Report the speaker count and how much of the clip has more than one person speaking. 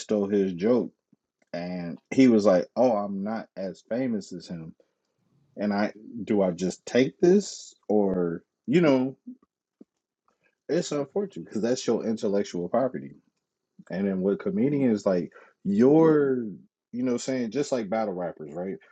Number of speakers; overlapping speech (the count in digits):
1, no overlap